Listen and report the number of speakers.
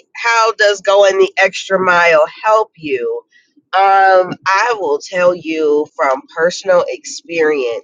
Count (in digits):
1